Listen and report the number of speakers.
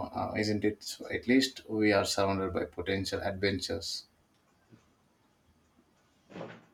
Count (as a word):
one